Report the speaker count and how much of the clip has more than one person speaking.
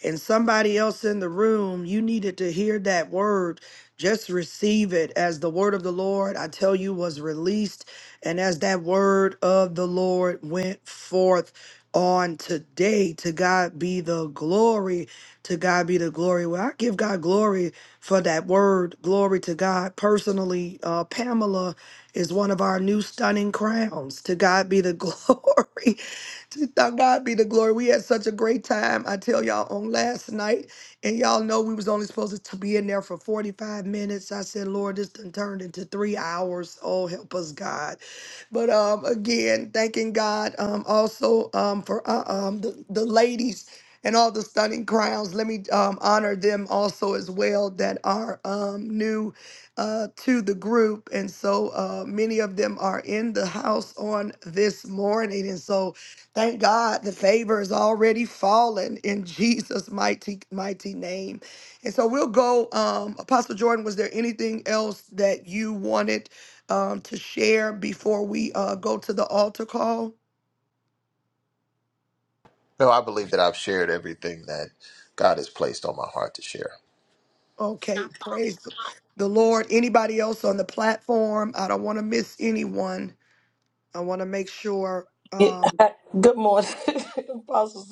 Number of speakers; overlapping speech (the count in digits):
3, under 1%